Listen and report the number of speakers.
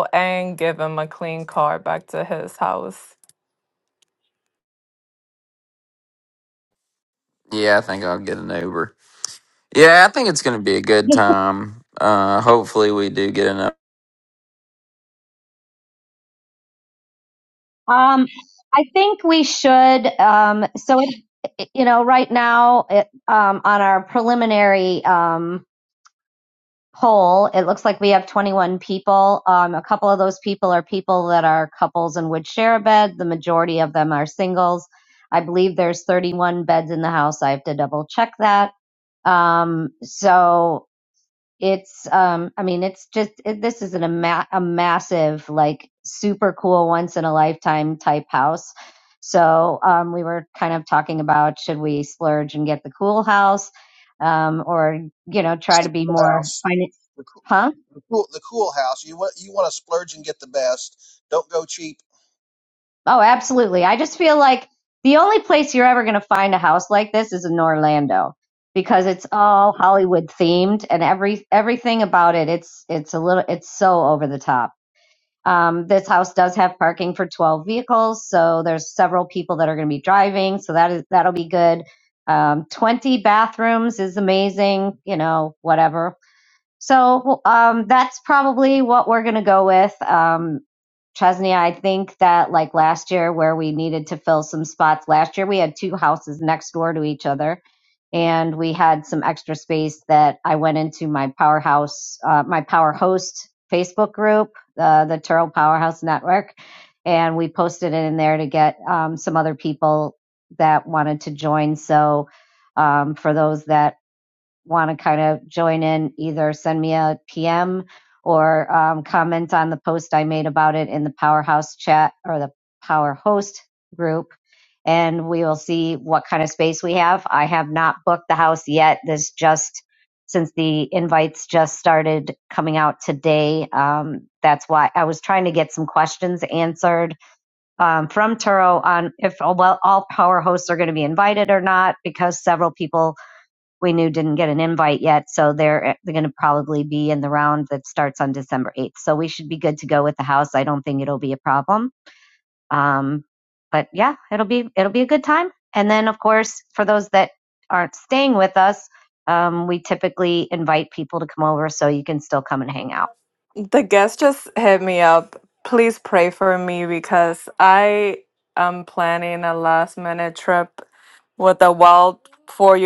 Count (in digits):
4